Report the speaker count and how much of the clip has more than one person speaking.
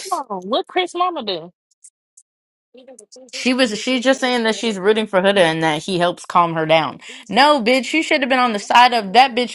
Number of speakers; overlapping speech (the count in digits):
2, about 7%